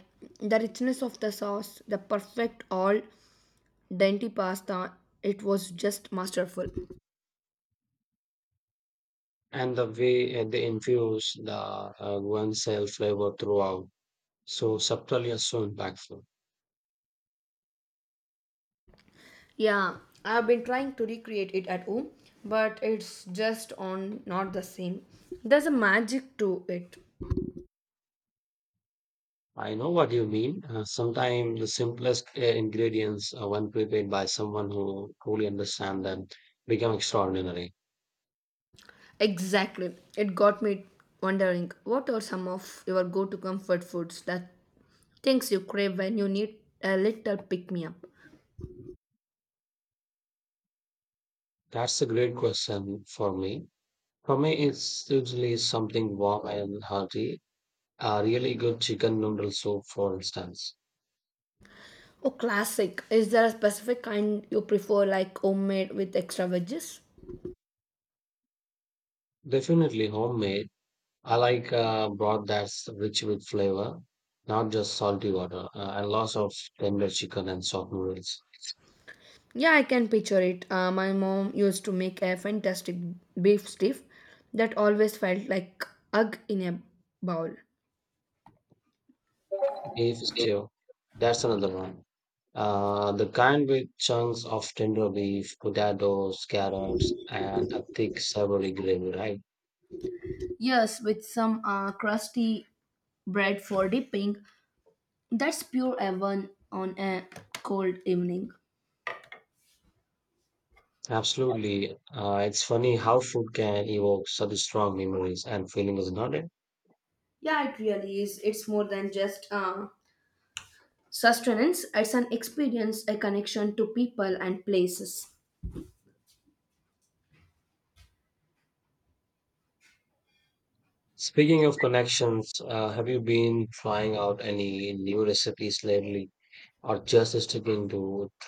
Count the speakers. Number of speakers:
two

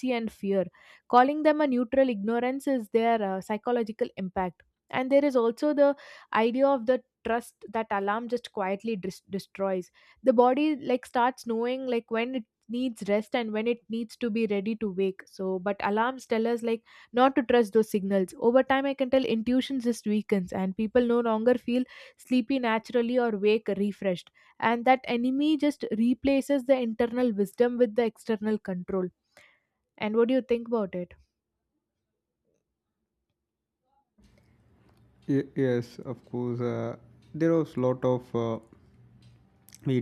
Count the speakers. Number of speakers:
two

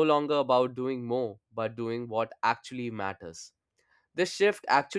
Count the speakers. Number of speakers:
one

